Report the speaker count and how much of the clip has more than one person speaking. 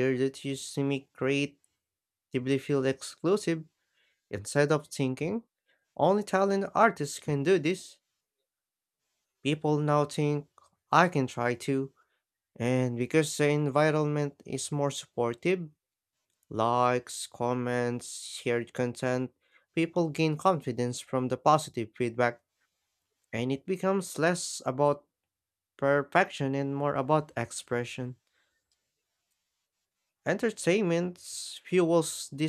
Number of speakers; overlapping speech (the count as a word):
one, no overlap